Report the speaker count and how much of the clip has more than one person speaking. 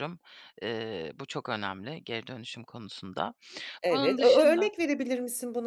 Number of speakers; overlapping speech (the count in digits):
2, about 14%